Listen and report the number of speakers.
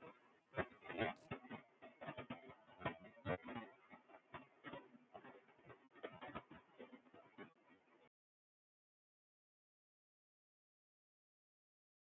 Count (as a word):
zero